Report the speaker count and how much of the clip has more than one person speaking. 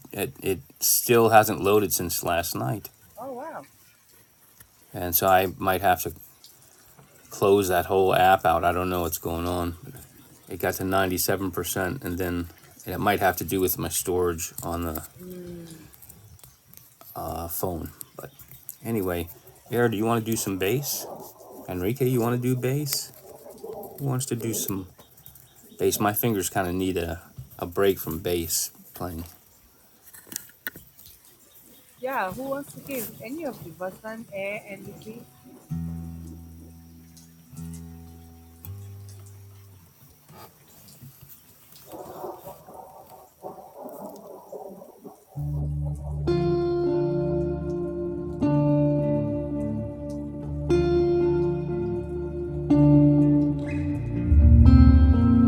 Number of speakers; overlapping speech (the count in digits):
2, no overlap